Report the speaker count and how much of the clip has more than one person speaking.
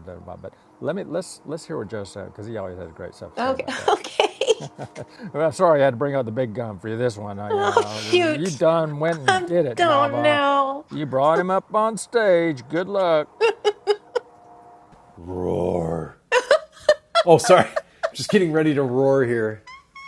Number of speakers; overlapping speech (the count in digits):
3, about 14%